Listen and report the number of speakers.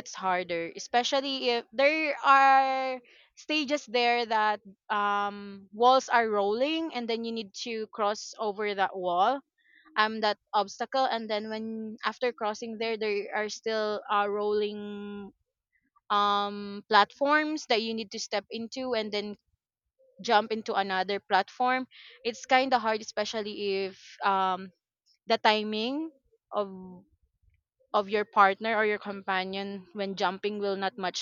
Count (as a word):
one